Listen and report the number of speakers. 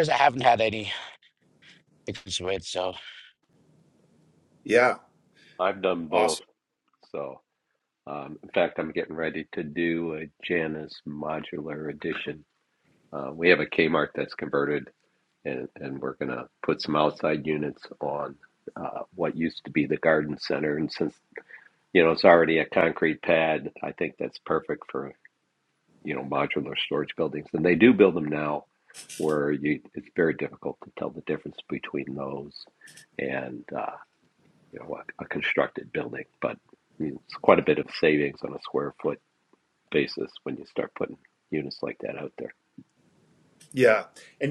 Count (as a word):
three